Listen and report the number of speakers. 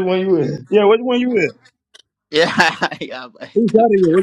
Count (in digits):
2